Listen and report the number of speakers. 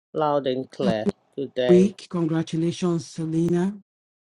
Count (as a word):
two